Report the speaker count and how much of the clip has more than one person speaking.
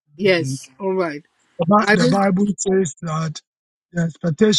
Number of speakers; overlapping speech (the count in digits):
2, about 13%